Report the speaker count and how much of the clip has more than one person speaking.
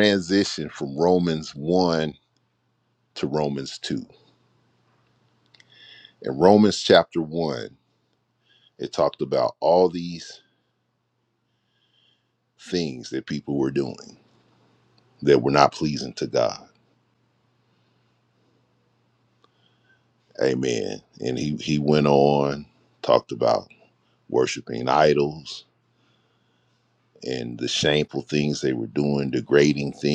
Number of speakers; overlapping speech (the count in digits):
1, no overlap